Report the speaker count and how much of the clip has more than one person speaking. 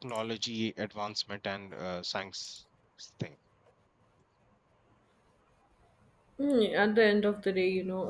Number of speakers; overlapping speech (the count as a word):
two, no overlap